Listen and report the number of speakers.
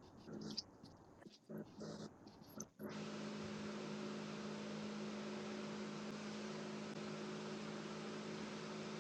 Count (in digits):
0